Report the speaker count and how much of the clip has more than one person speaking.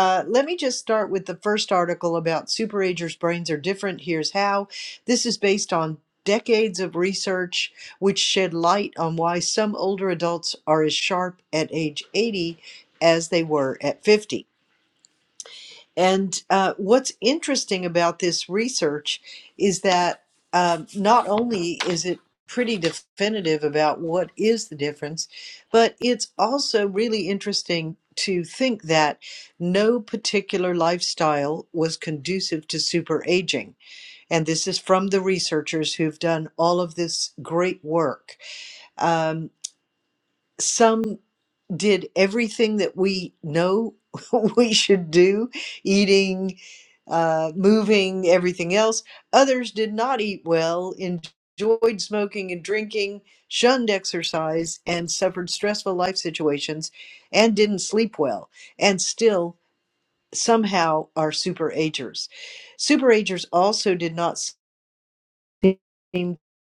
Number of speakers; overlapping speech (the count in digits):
1, no overlap